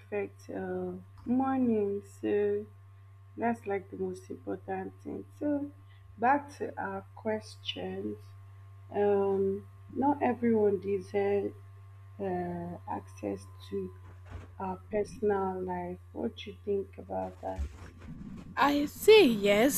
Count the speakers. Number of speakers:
two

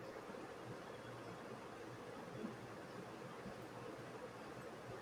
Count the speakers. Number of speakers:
zero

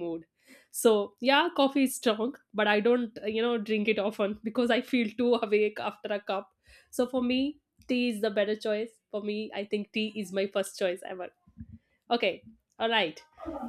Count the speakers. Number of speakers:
one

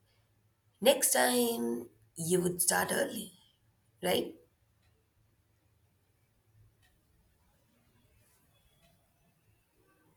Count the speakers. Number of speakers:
one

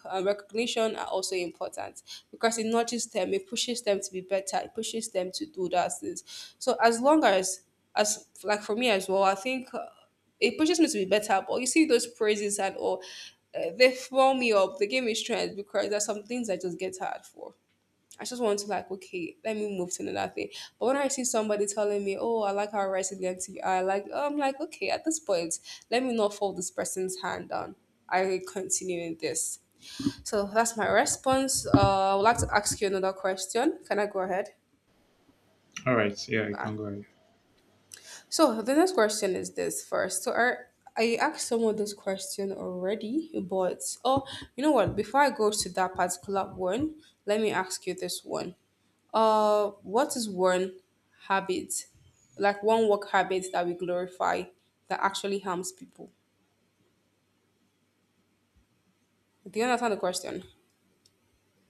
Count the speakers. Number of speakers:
two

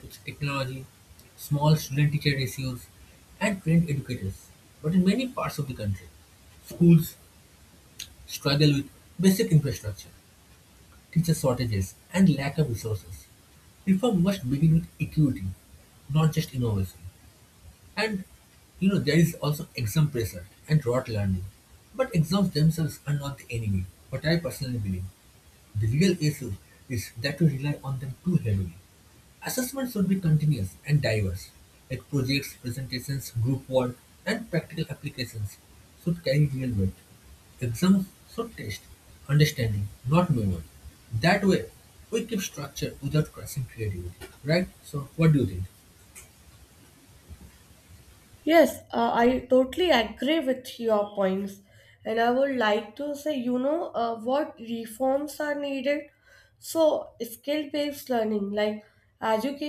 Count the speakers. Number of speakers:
two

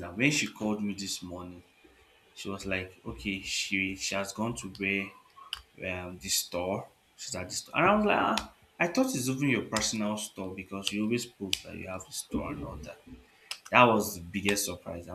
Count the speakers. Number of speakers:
one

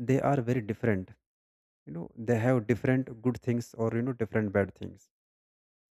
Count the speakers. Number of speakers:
one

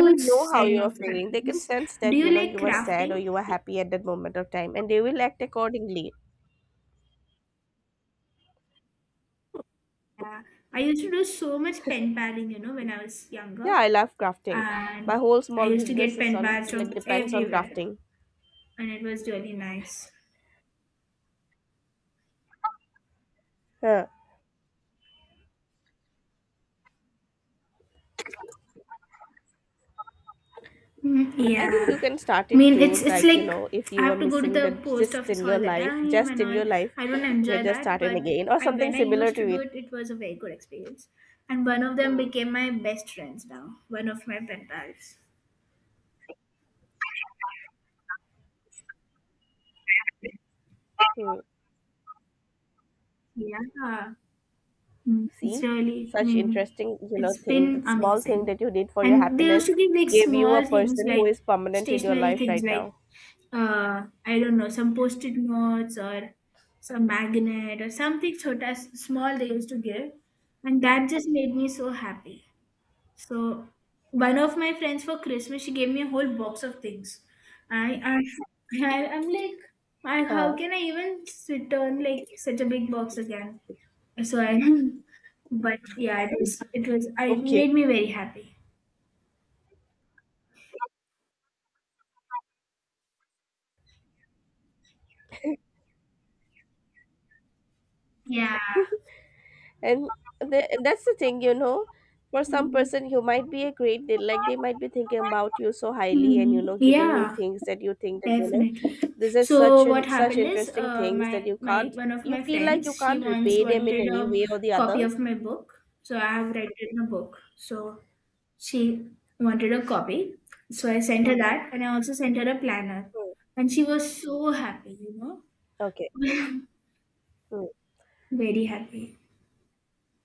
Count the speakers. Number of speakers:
two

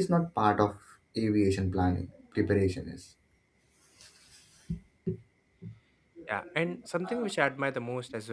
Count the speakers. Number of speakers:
two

